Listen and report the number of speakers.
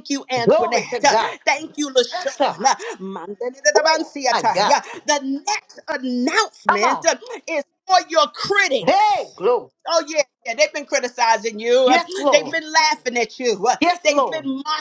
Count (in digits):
2